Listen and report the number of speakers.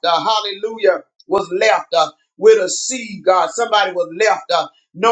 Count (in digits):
1